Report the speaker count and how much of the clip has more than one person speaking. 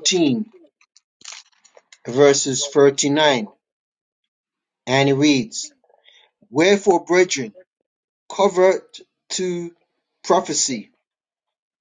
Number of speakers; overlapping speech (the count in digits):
1, no overlap